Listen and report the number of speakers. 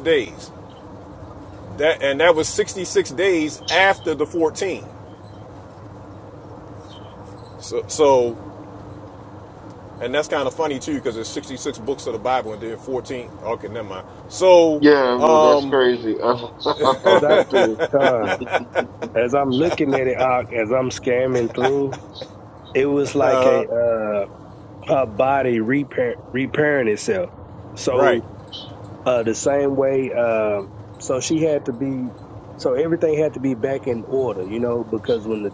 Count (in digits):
3